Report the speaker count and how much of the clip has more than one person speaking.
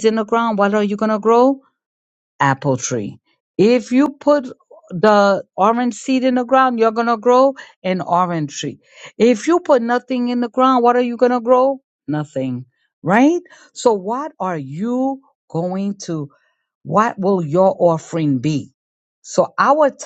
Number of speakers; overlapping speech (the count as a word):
one, no overlap